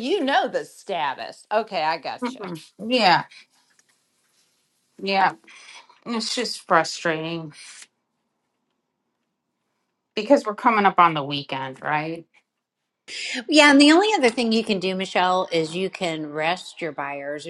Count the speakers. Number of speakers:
3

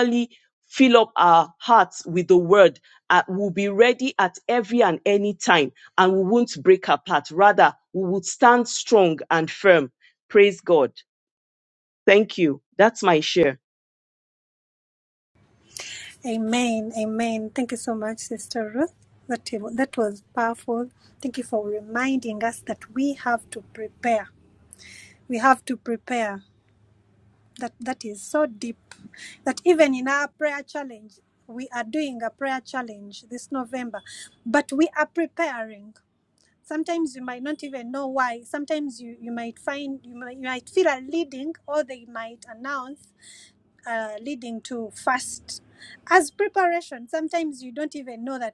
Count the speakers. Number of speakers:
2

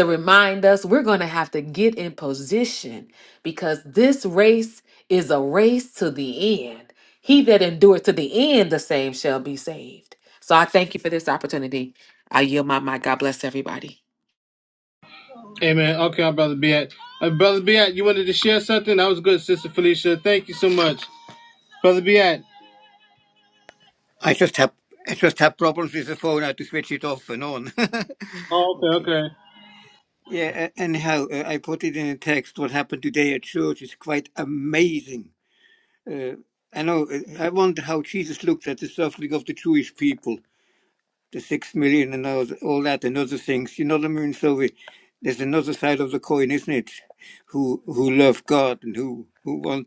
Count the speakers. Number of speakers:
3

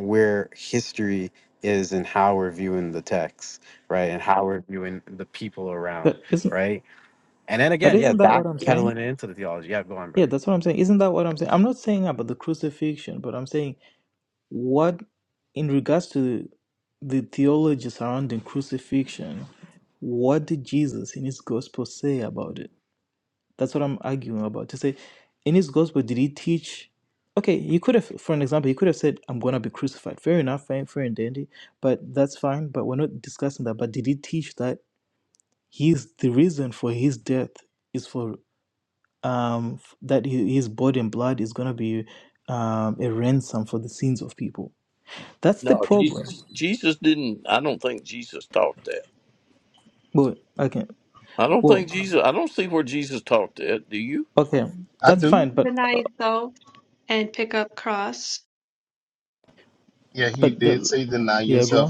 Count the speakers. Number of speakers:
5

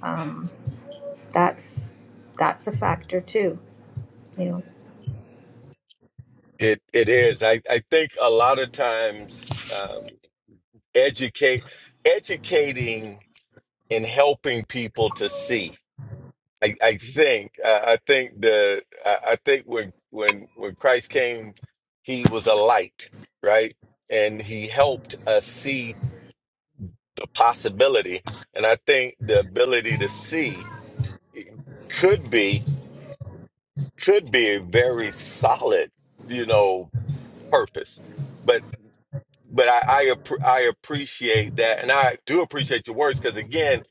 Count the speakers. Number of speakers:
2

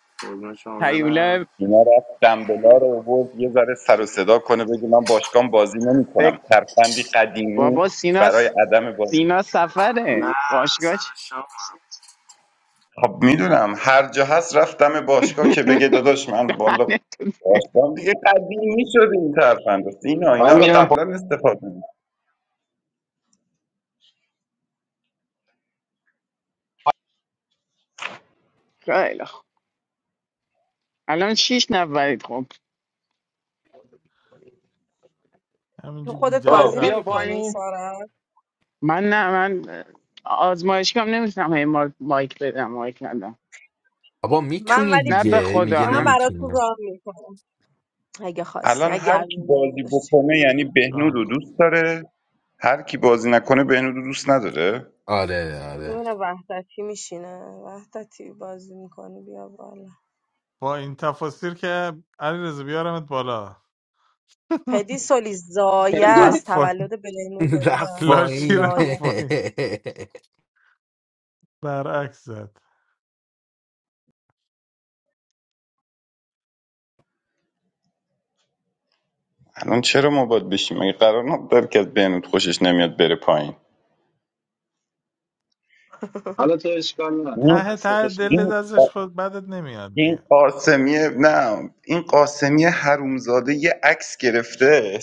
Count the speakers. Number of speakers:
7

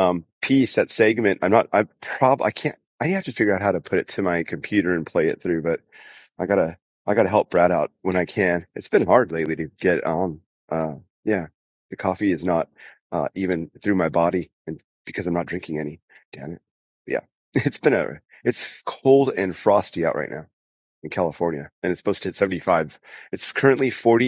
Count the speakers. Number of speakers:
1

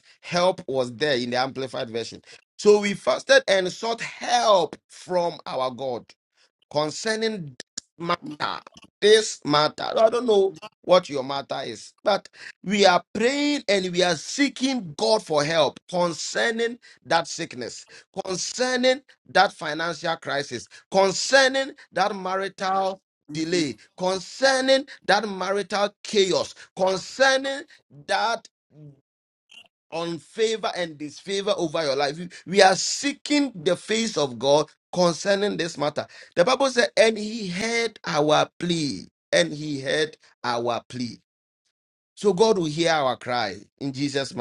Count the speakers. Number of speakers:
1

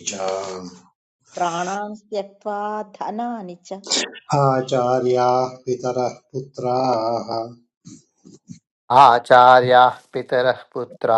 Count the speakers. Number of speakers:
3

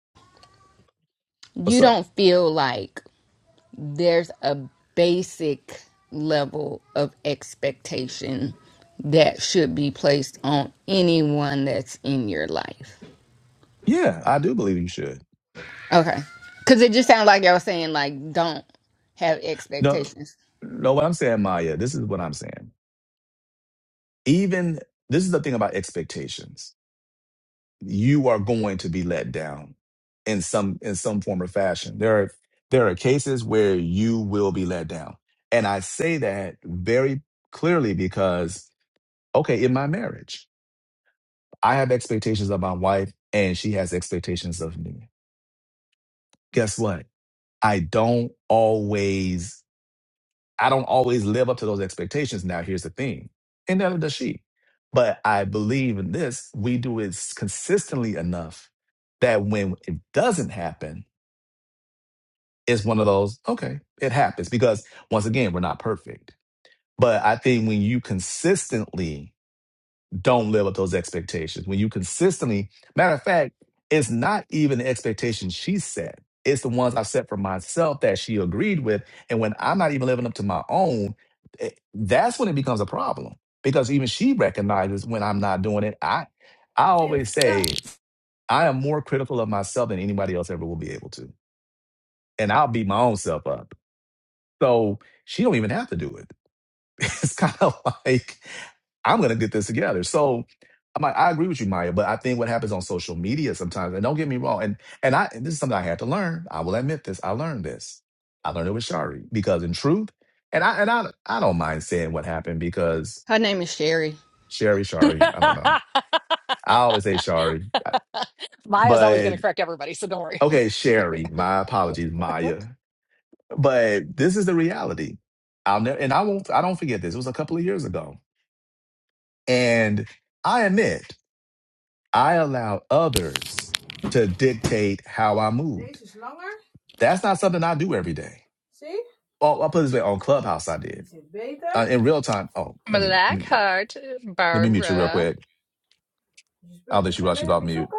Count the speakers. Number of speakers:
4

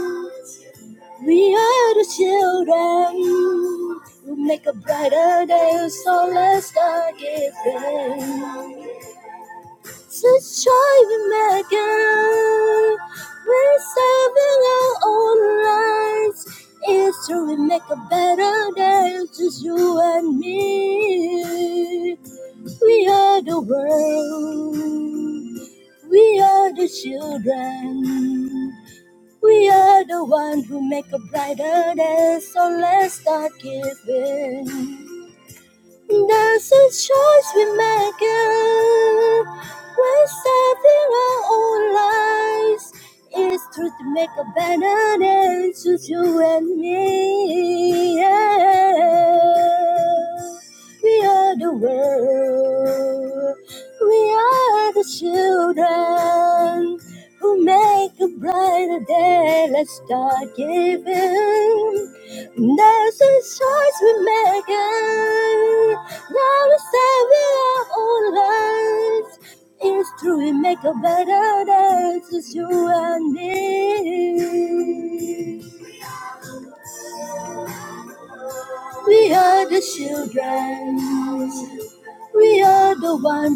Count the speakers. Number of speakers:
1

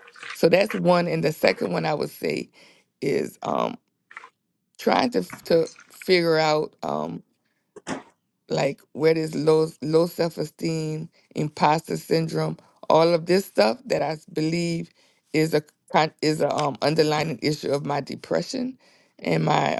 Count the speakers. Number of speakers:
1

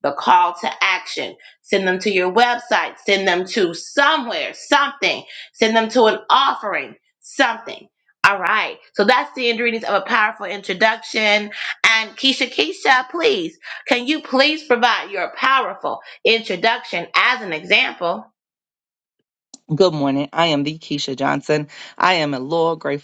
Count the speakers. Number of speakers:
2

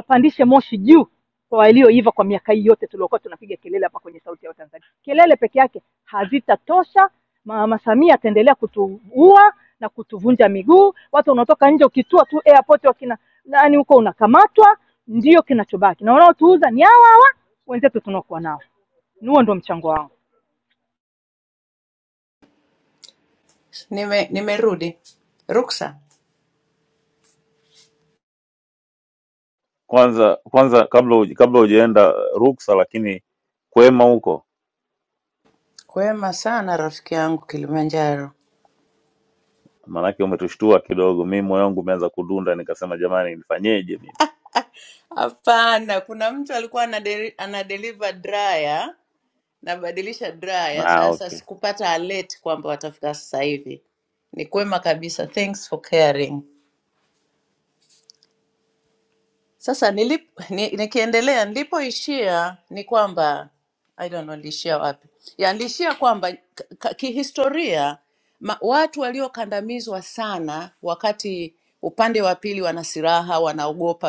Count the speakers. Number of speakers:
3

